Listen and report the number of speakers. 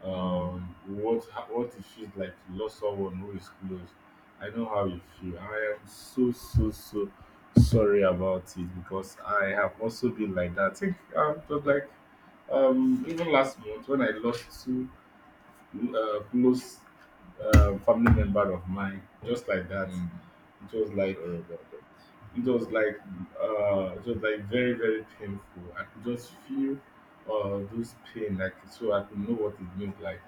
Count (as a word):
two